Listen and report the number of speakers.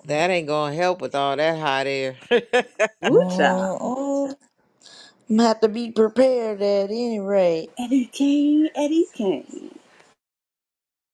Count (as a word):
three